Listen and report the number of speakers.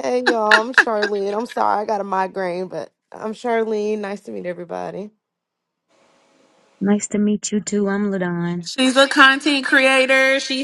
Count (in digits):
3